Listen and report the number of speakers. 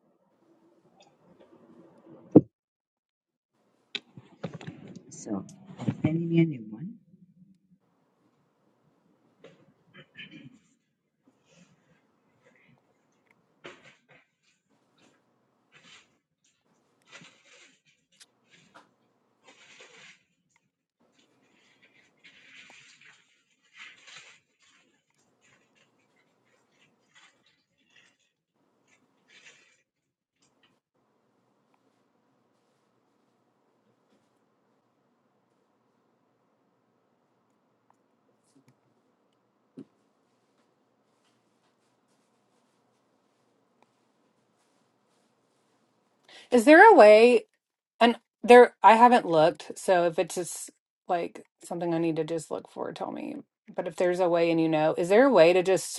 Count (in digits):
2